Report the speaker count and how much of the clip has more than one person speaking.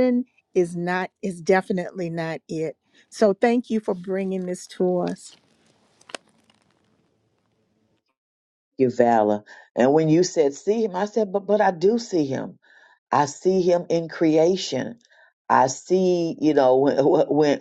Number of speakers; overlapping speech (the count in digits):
2, no overlap